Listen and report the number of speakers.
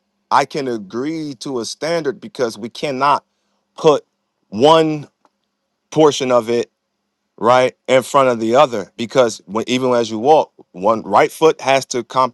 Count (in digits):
1